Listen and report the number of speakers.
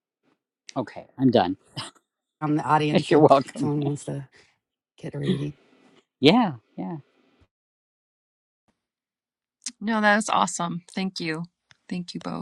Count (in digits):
3